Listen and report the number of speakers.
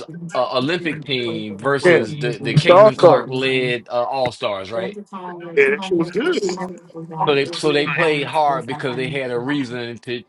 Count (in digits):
2